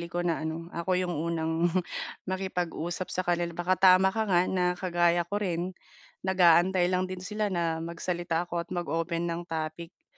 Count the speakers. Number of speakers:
1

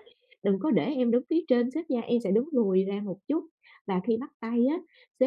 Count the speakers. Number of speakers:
1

